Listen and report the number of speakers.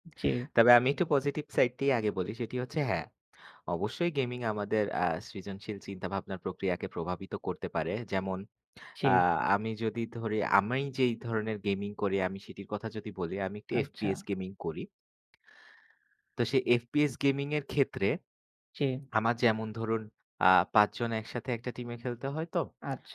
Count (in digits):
2